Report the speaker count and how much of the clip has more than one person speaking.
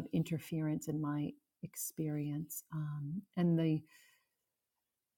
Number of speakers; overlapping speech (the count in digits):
1, no overlap